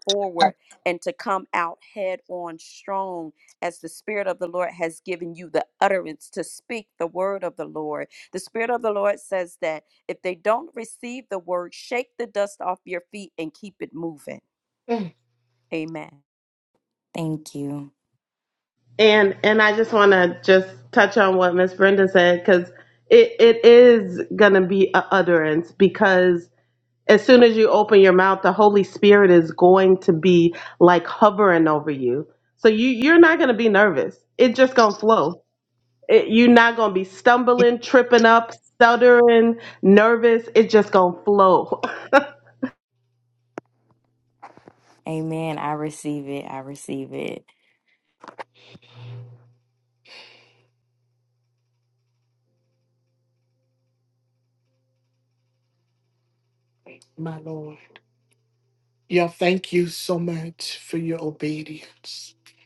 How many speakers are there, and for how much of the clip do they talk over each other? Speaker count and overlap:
4, no overlap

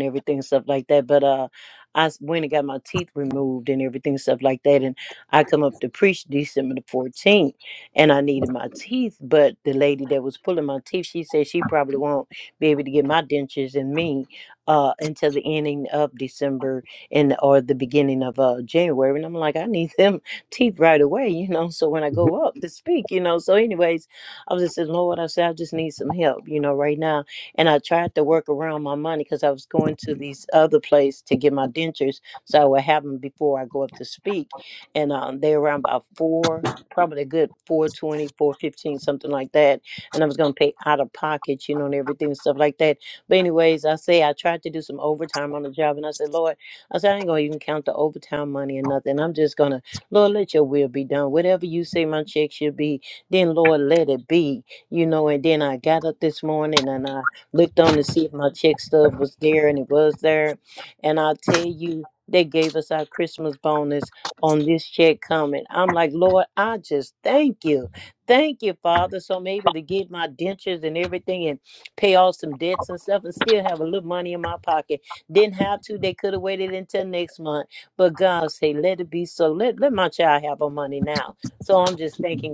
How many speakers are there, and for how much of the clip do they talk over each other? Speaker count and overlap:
1, no overlap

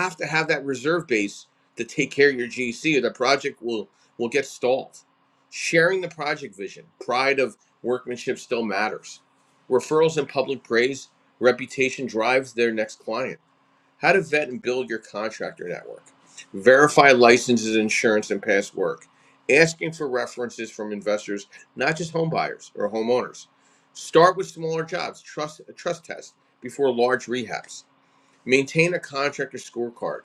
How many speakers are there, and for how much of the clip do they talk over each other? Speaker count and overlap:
1, no overlap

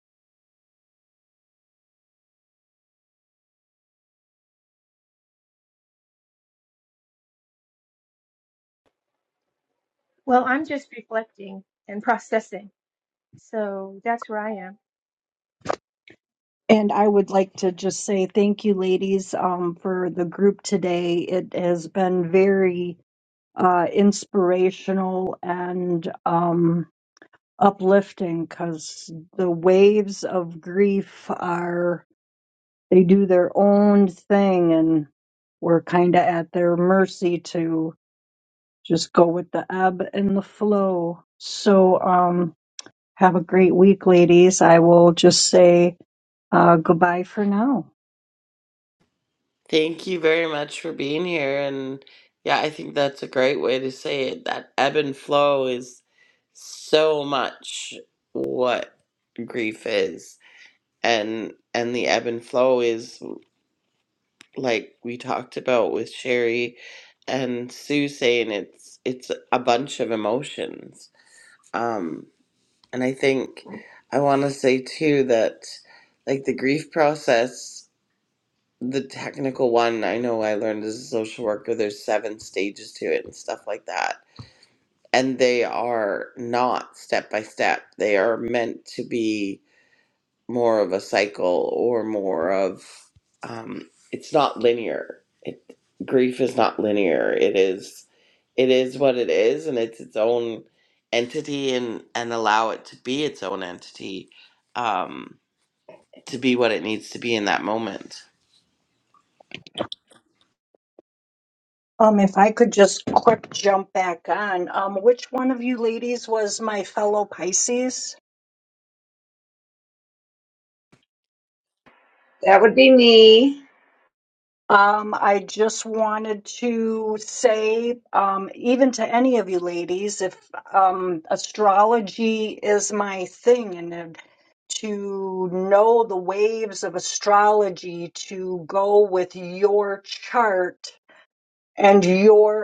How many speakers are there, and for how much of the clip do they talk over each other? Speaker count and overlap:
4, no overlap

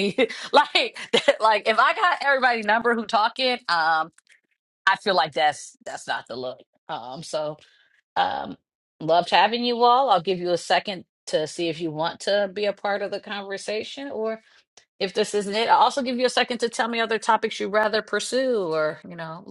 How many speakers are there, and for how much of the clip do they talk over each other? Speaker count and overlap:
1, no overlap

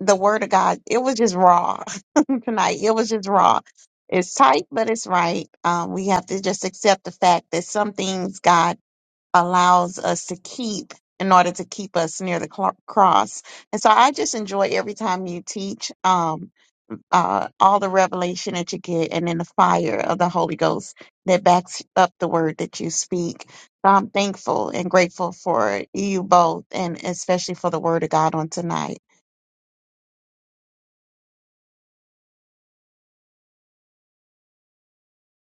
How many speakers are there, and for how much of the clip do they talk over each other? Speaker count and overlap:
1, no overlap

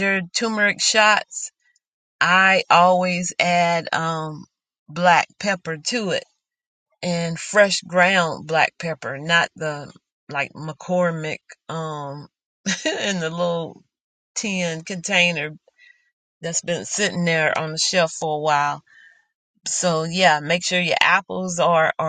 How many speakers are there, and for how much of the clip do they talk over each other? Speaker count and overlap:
1, no overlap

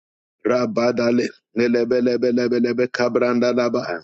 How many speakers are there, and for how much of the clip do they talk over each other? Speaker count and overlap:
1, no overlap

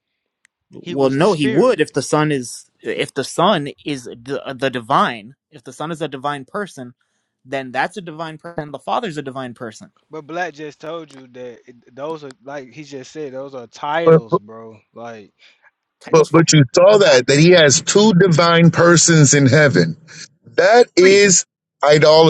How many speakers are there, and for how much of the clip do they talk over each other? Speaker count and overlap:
3, about 8%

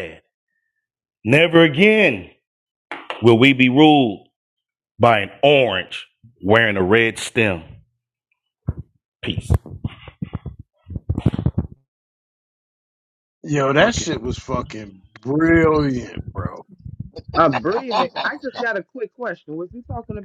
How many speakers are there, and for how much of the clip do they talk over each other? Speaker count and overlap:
3, about 2%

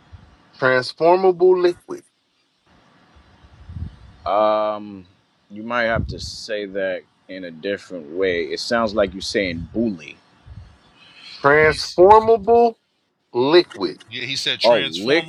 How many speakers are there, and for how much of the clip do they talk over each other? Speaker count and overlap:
3, about 6%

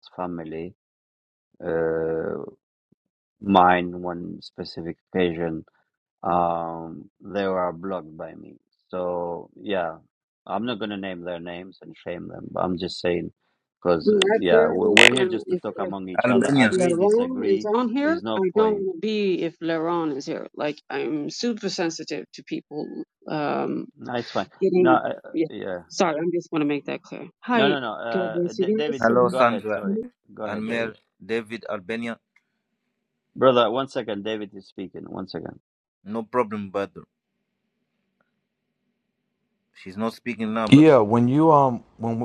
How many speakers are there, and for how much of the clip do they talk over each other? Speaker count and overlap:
4, about 18%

